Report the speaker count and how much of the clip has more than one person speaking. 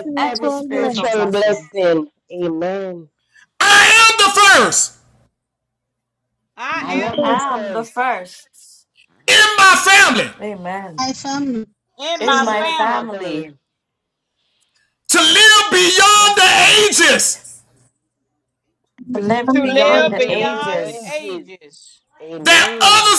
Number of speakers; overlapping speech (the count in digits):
5, about 33%